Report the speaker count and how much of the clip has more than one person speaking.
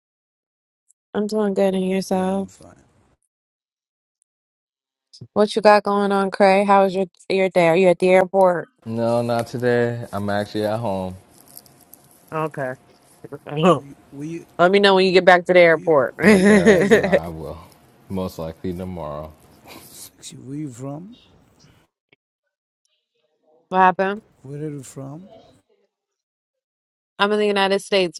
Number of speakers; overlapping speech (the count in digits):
3, about 7%